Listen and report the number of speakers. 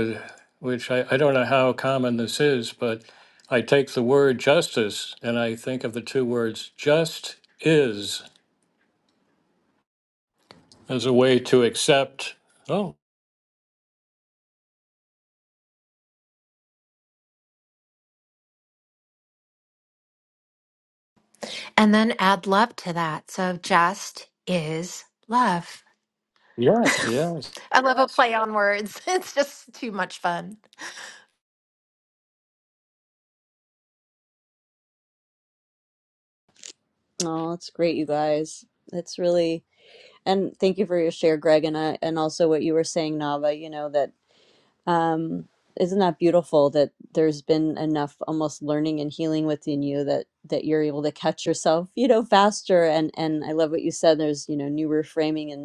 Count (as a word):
three